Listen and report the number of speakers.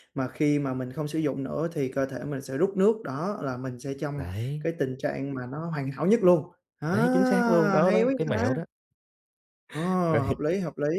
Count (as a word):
two